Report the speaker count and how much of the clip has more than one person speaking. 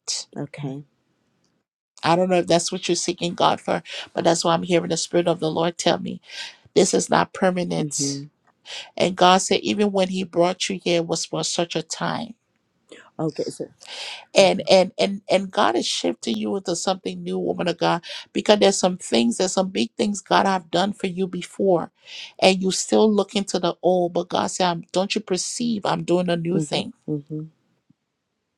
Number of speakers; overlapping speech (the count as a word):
two, about 3%